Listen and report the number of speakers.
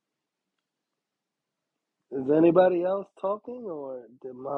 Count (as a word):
one